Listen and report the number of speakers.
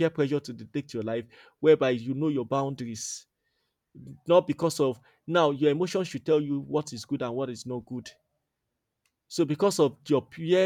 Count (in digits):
1